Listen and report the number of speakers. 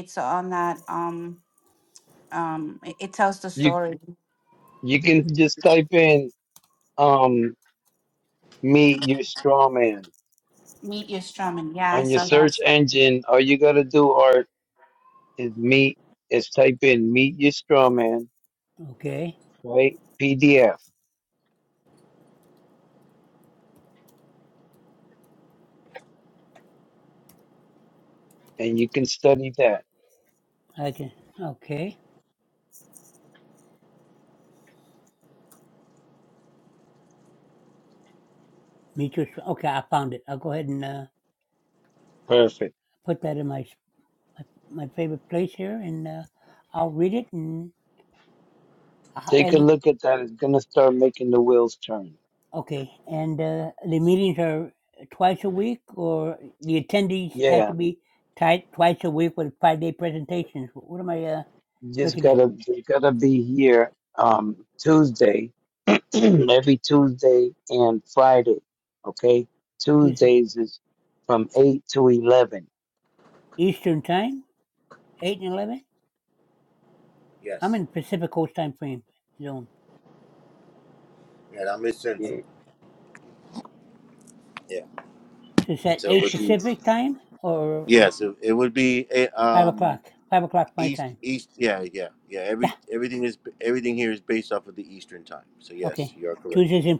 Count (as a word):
four